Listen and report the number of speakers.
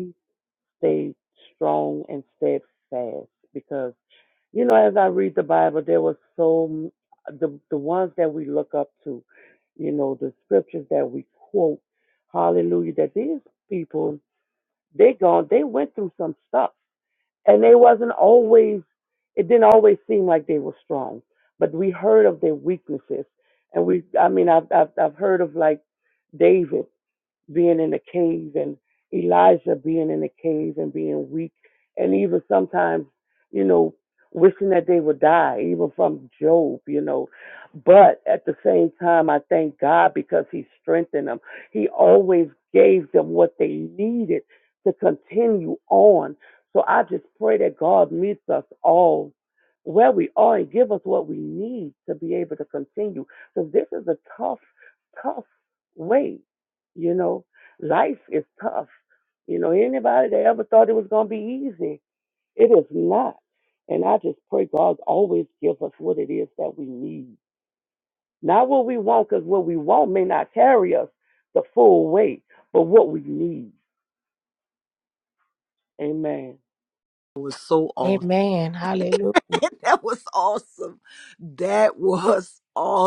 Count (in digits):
3